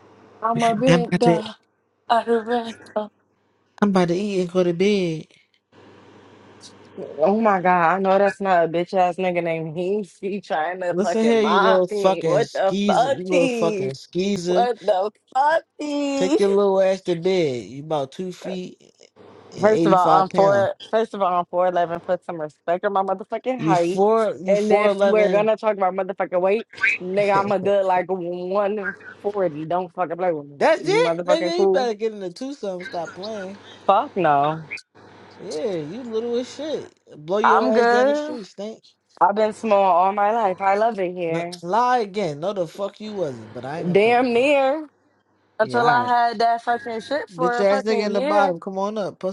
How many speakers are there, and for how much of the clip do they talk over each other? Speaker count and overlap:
2, about 21%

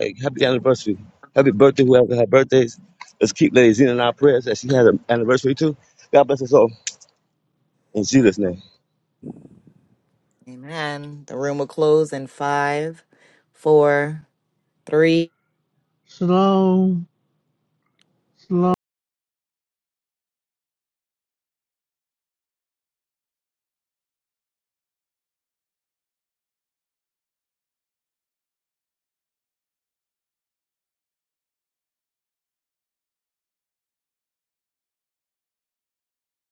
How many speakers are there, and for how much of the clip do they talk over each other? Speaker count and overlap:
3, no overlap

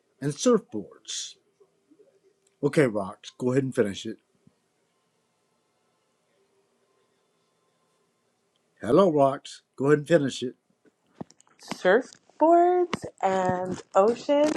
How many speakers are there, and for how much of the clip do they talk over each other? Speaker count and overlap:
2, no overlap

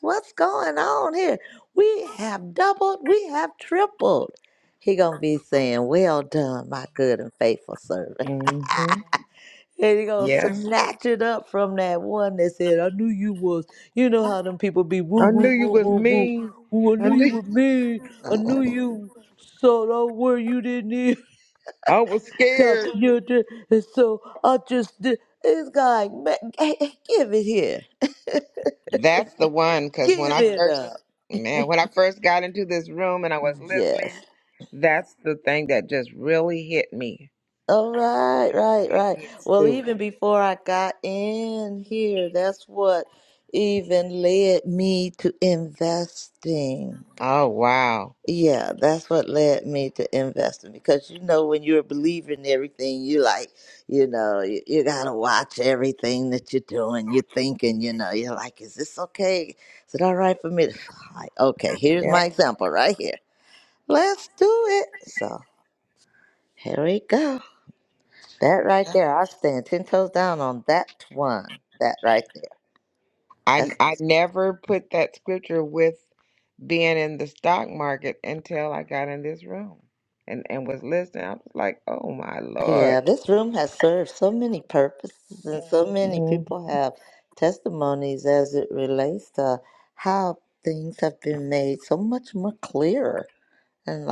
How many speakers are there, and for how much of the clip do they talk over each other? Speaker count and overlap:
2, about 6%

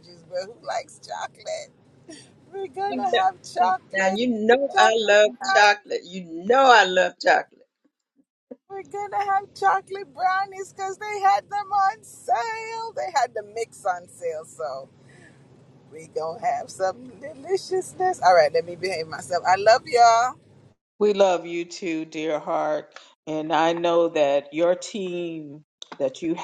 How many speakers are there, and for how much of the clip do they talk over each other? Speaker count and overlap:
3, about 6%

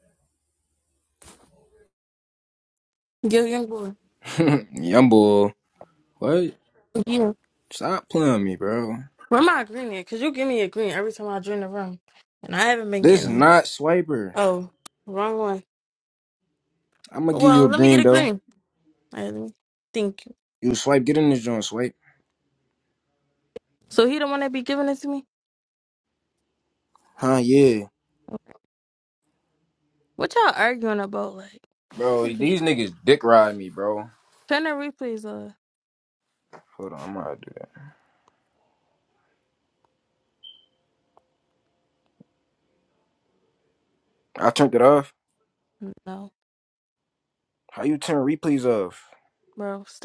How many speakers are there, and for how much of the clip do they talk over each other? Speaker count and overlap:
2, about 3%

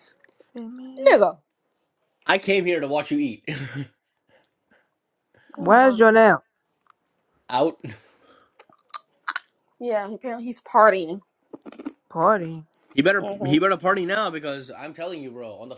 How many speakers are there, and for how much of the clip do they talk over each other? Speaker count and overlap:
3, about 6%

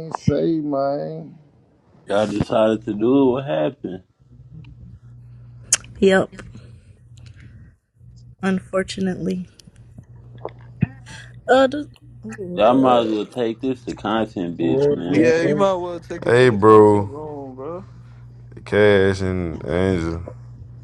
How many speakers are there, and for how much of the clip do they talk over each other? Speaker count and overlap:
5, about 12%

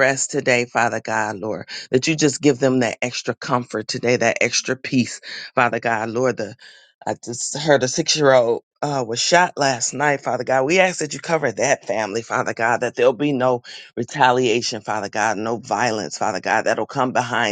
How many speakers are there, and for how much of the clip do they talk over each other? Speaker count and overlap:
1, no overlap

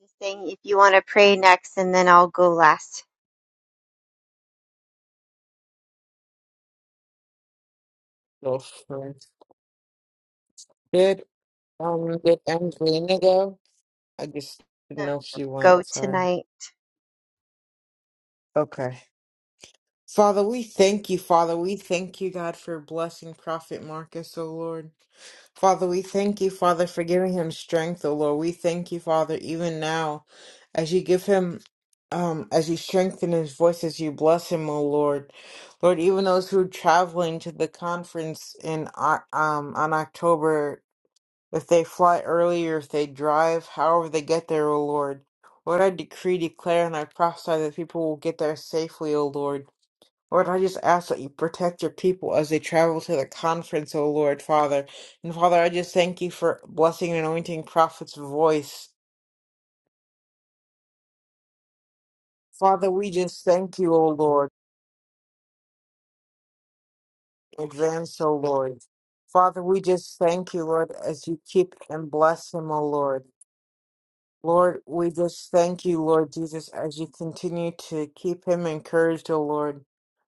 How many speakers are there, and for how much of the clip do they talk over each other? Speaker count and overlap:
2, about 1%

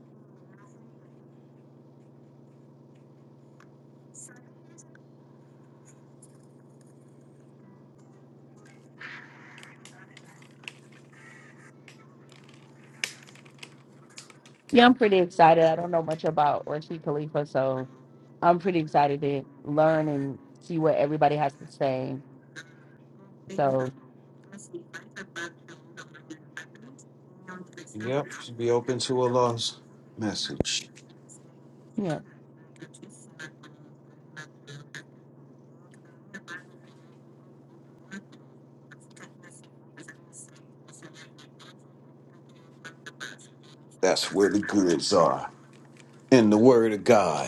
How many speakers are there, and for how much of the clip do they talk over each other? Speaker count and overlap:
2, no overlap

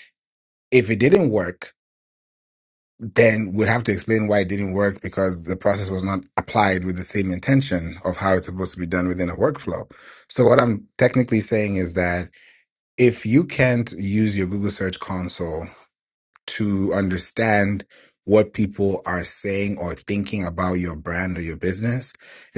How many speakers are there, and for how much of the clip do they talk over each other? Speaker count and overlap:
1, no overlap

